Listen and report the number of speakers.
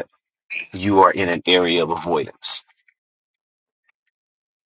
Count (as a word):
one